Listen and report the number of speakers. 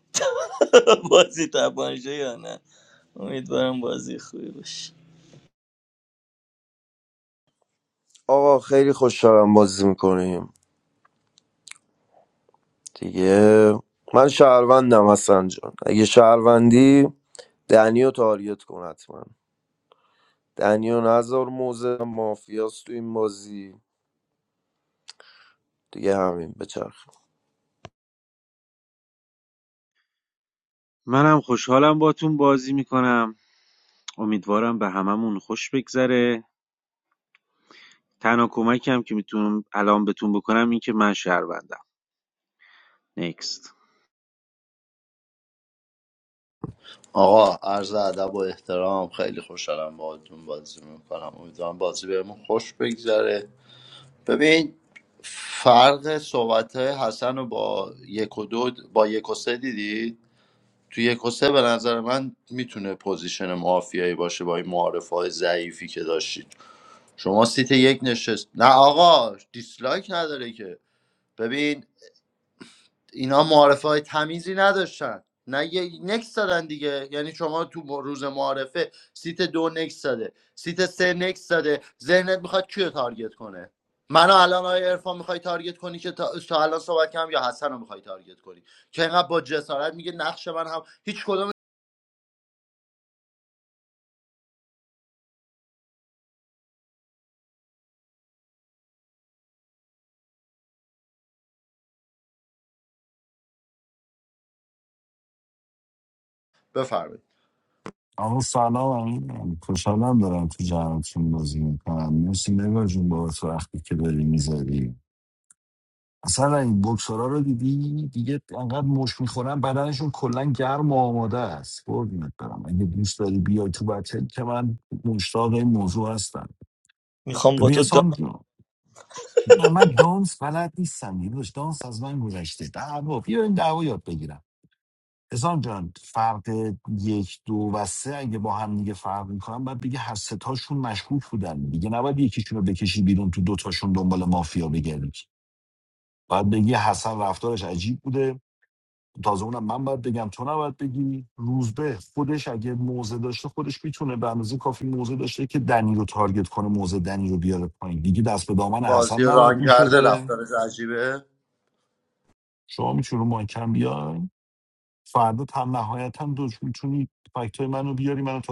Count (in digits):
5